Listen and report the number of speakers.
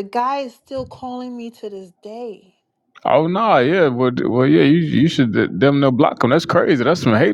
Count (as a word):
two